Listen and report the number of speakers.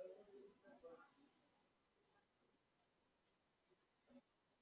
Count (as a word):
zero